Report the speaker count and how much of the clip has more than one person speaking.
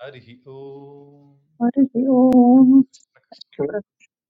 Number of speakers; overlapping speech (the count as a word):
two, no overlap